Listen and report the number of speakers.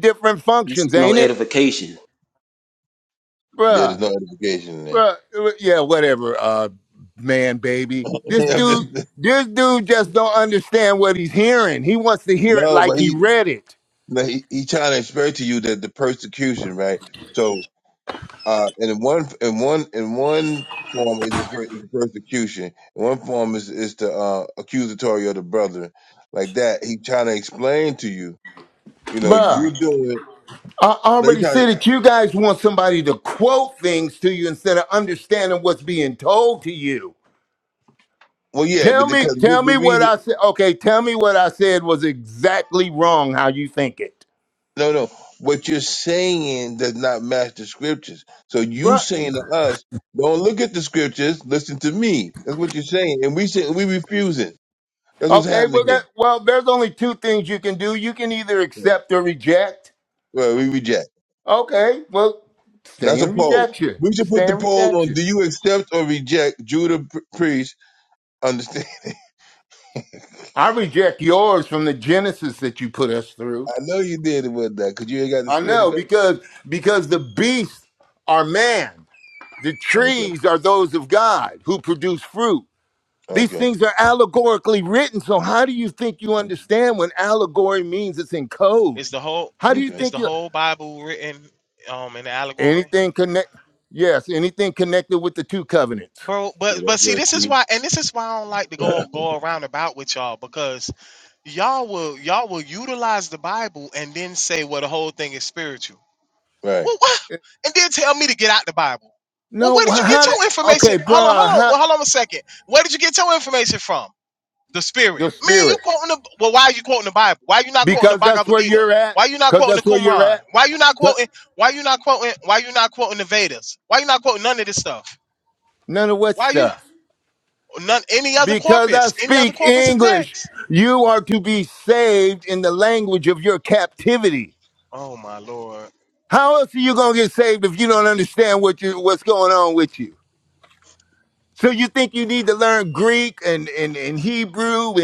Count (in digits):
4